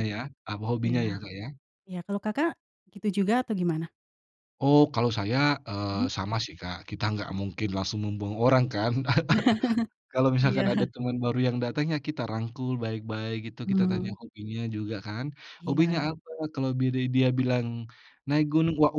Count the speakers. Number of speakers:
2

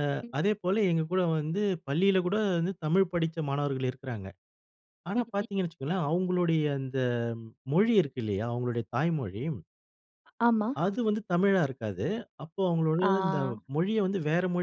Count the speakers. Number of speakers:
2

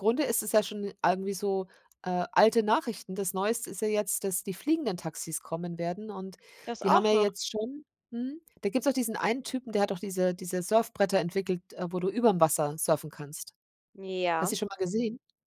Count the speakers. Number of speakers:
2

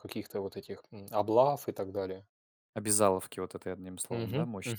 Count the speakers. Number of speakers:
2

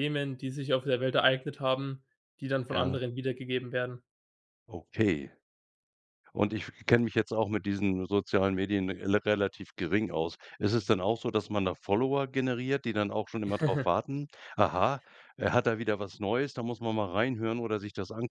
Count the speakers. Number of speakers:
2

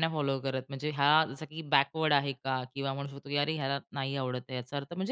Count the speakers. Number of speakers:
1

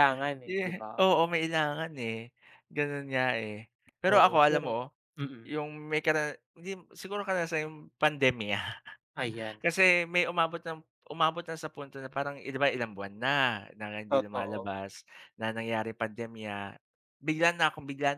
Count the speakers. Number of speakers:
2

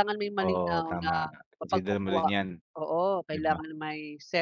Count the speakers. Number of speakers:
2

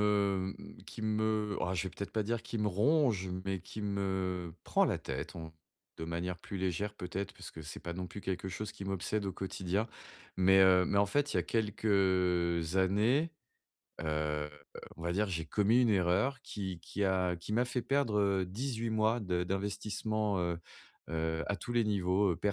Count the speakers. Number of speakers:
1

